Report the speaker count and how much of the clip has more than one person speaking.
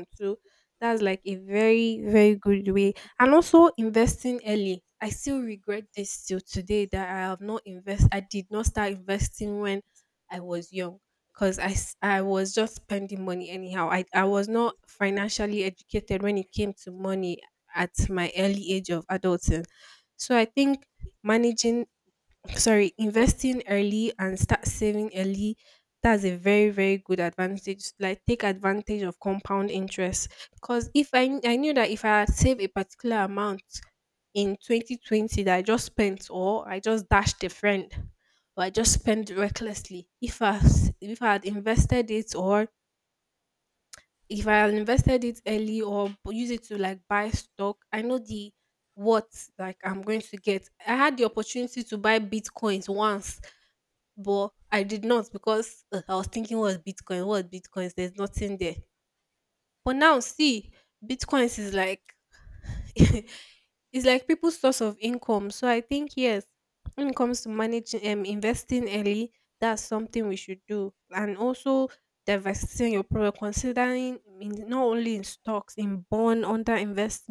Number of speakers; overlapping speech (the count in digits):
1, no overlap